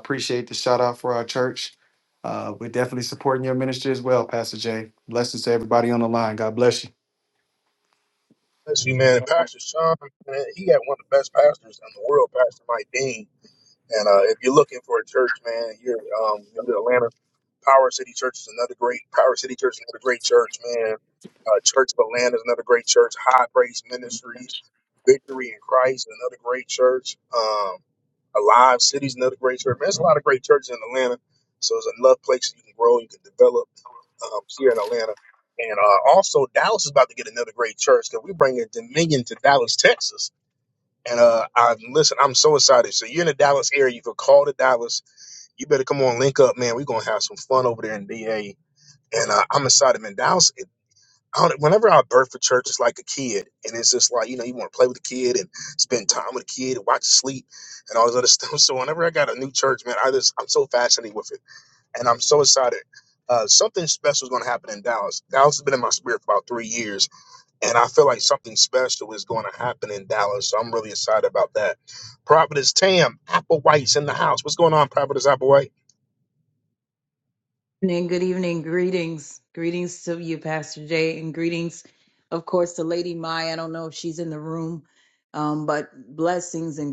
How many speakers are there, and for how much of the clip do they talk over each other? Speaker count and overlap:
3, no overlap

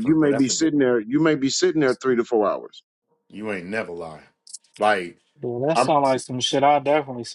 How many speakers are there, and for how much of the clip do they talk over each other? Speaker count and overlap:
3, about 12%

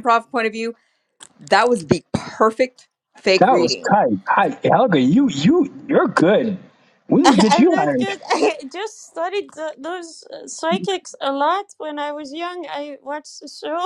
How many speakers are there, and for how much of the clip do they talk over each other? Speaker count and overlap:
3, about 11%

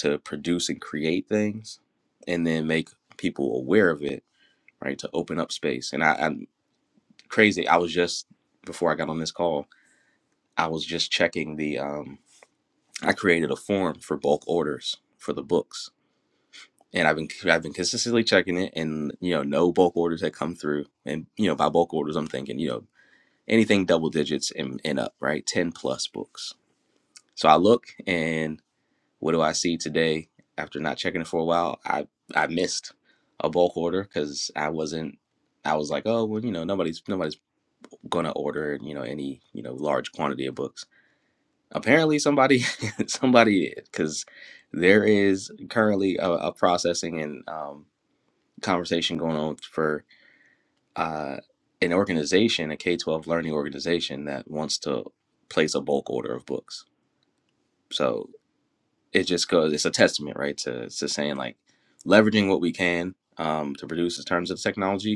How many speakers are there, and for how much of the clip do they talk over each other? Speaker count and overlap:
1, no overlap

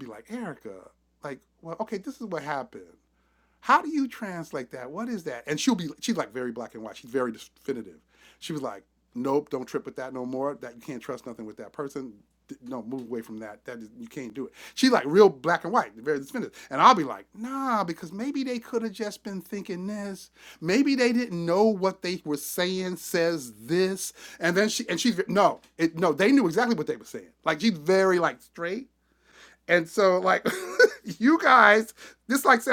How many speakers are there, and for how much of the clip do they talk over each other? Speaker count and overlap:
1, no overlap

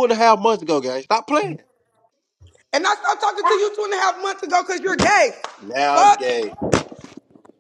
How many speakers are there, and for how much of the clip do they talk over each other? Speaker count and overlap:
2, about 4%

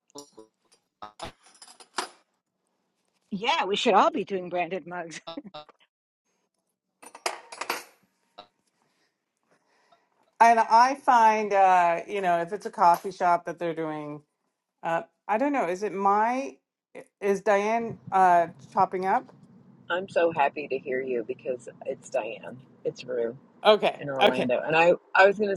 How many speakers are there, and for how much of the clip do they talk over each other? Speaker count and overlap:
3, about 2%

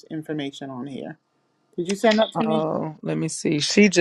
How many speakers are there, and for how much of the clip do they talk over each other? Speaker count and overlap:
2, about 7%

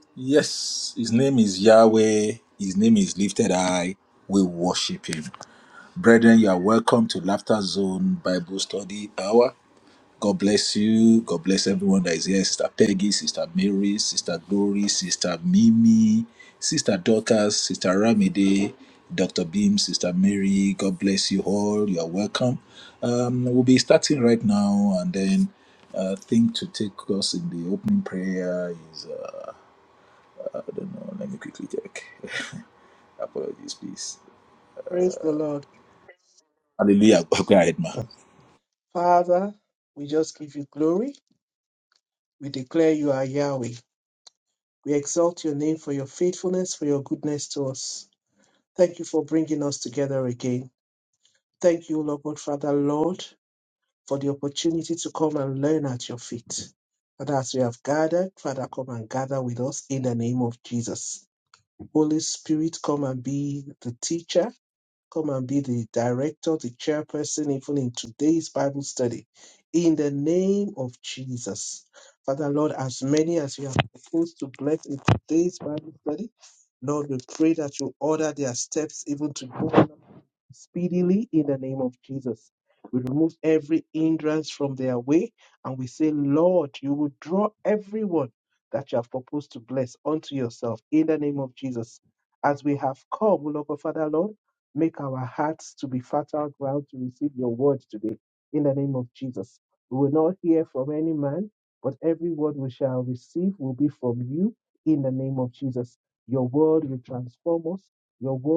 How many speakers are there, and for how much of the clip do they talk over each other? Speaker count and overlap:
2, no overlap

